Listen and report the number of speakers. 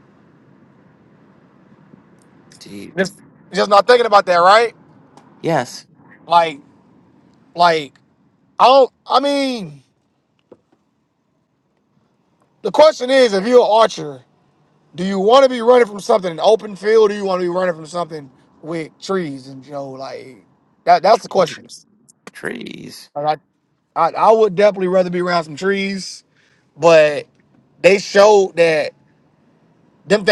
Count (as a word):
two